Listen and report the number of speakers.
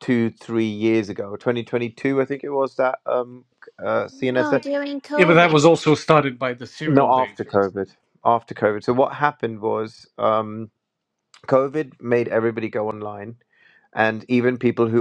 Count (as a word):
three